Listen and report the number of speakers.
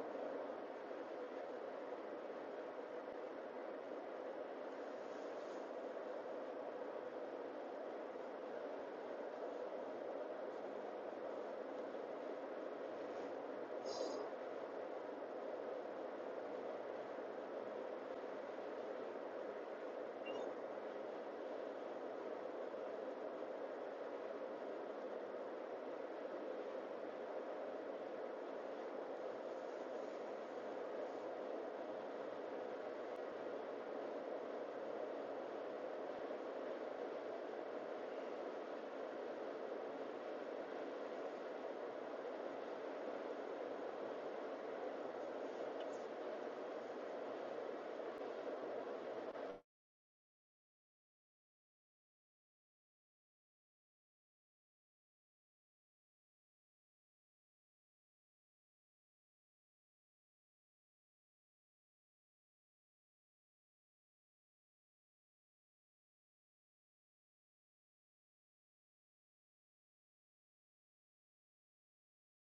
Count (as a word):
zero